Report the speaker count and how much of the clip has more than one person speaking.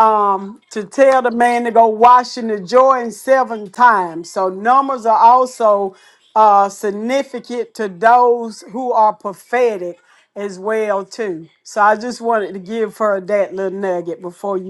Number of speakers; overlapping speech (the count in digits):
1, no overlap